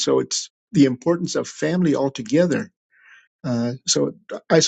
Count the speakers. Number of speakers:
1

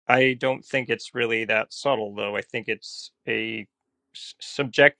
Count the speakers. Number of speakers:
1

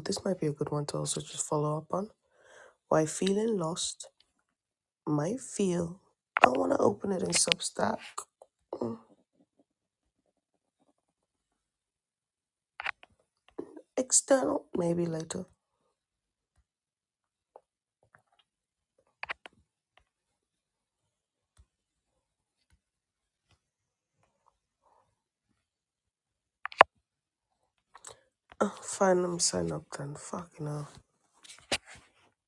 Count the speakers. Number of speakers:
1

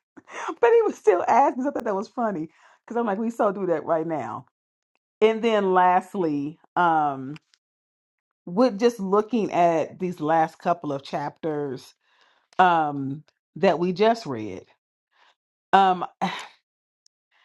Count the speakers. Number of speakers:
1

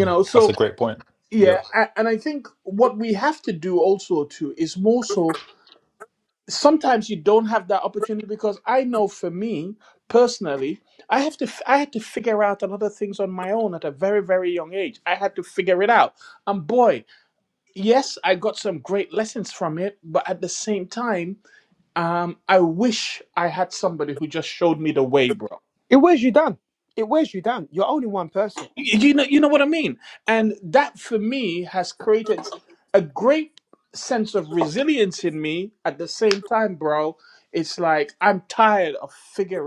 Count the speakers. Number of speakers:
3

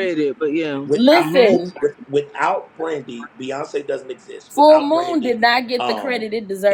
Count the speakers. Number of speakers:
3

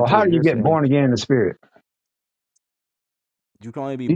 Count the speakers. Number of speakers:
2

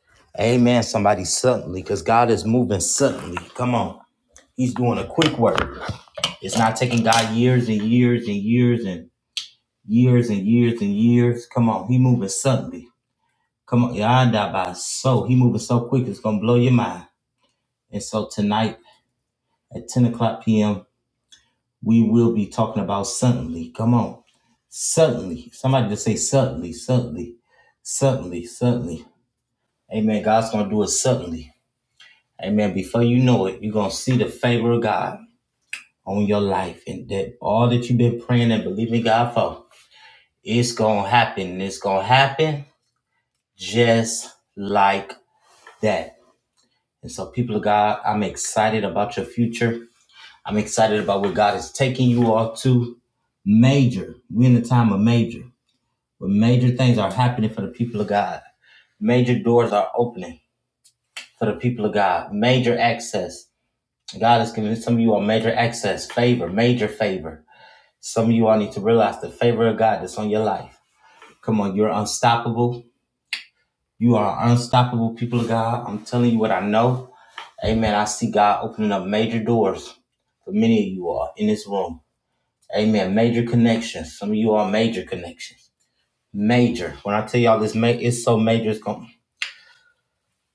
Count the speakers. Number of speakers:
1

